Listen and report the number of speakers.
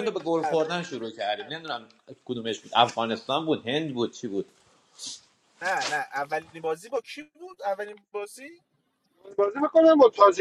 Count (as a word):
three